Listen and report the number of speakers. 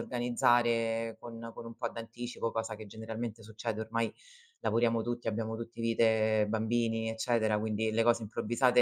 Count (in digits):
1